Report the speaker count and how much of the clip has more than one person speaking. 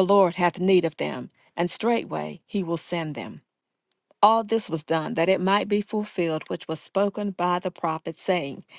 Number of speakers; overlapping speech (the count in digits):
1, no overlap